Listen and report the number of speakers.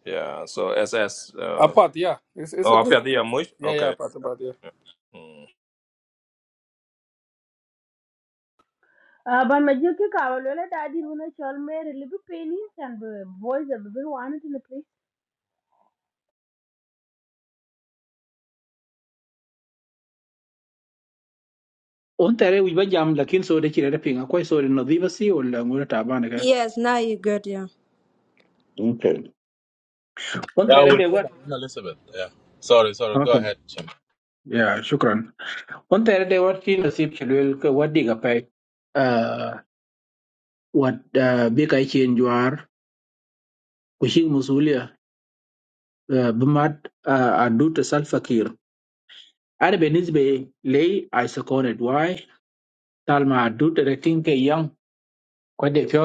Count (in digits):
6